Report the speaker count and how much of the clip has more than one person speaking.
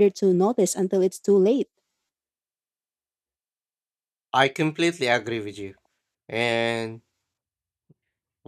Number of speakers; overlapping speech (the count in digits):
2, no overlap